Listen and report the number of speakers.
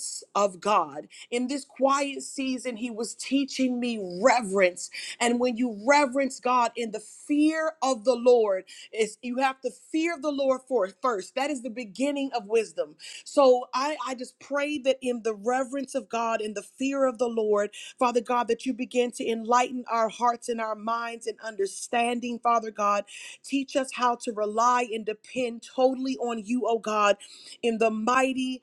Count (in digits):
1